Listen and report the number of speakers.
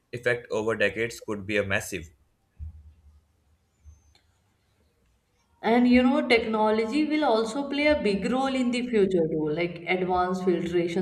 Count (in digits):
2